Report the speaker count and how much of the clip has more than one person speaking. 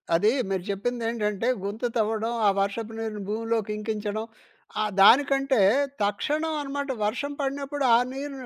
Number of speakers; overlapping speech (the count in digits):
1, no overlap